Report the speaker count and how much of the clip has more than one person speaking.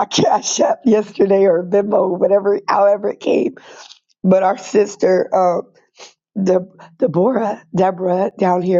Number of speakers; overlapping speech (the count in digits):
1, no overlap